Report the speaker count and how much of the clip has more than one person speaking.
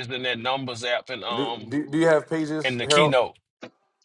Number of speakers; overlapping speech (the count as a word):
two, about 20%